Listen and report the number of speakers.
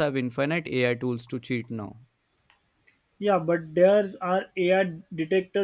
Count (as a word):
two